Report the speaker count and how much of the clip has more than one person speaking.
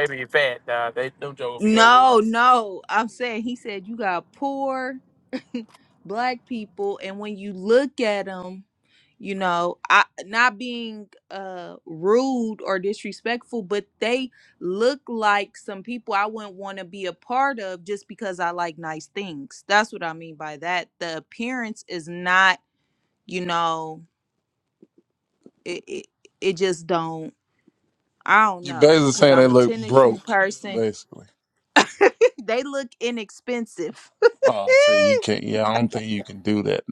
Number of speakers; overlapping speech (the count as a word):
three, about 6%